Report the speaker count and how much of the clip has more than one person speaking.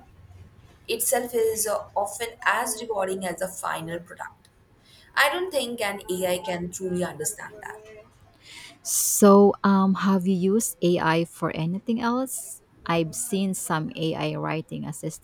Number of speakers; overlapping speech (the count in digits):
2, no overlap